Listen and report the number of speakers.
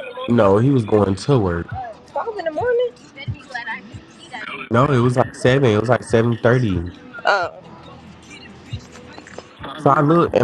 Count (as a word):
two